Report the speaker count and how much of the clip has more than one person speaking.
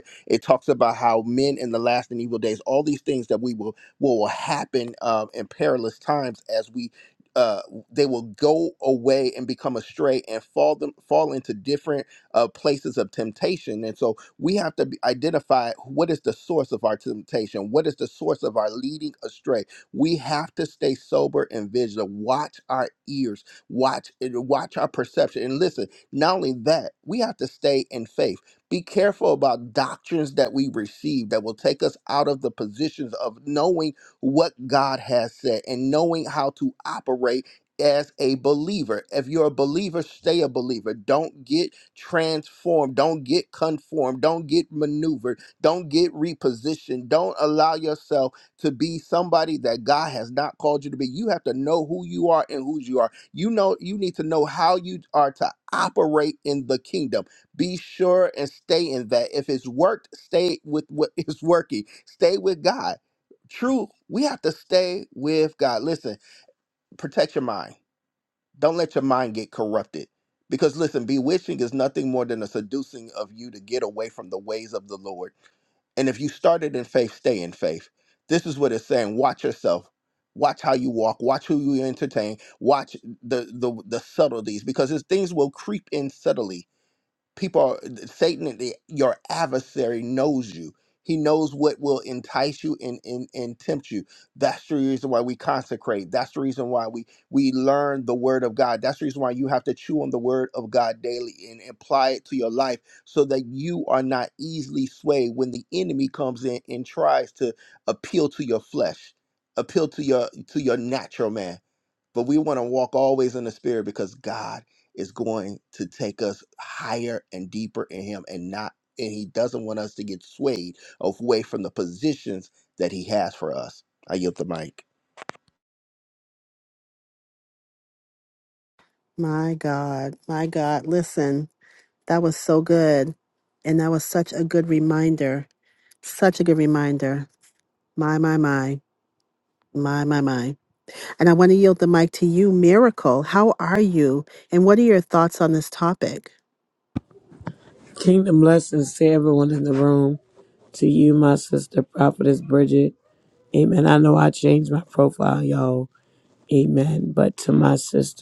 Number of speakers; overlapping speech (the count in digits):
3, no overlap